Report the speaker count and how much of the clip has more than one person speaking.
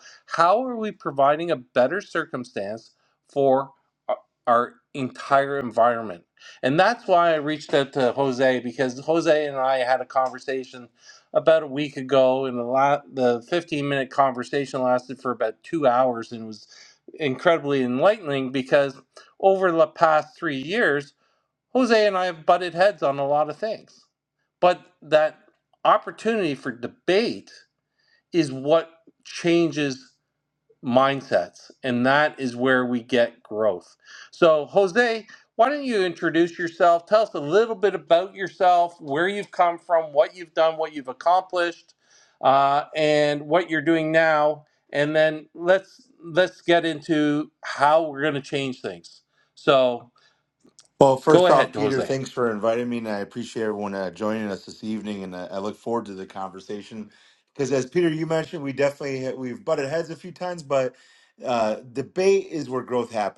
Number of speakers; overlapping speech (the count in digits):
2, about 1%